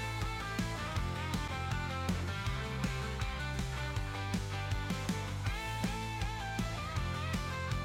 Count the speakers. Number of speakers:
0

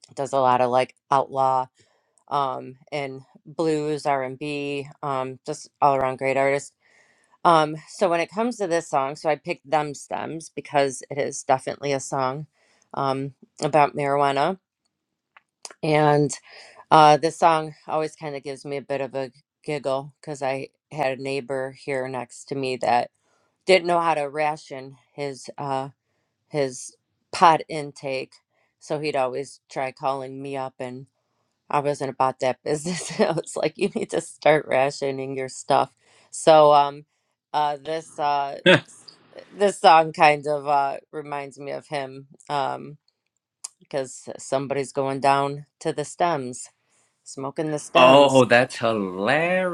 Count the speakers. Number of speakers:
2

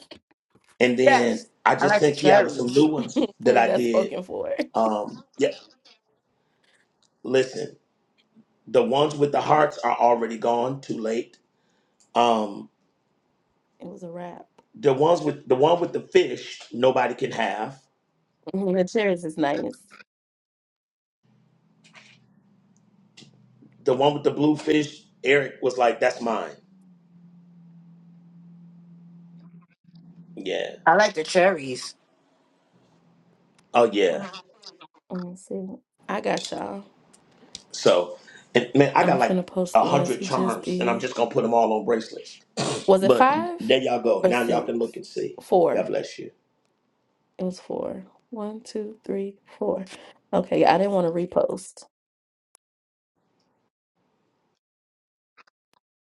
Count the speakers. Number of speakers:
3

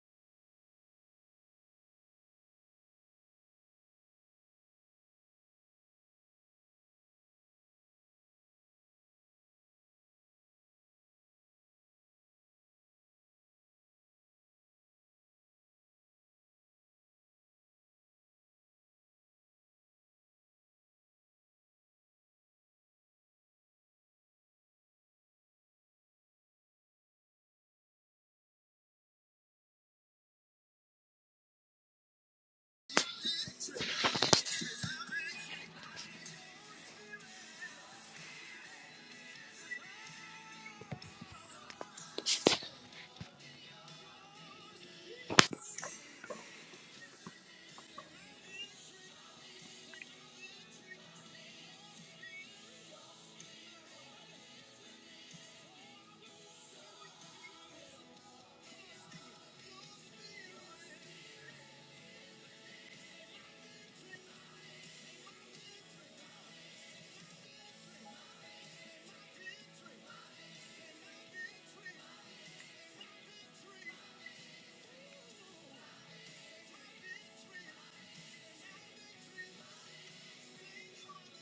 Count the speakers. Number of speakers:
0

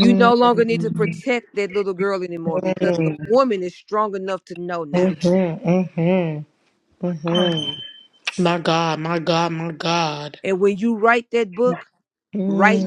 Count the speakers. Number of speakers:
2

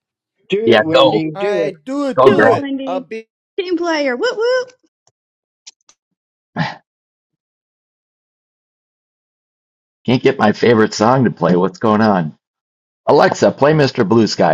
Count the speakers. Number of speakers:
4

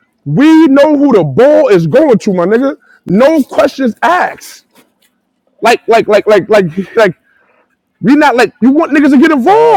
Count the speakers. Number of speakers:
1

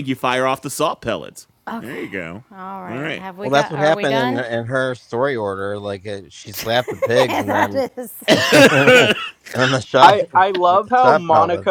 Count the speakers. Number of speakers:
4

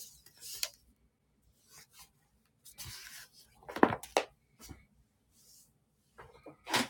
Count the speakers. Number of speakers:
0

